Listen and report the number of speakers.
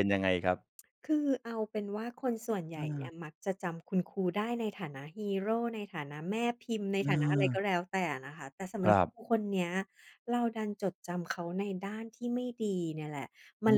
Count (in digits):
2